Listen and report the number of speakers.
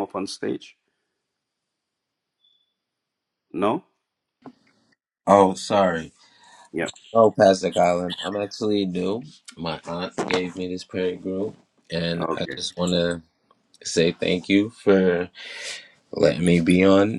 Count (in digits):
2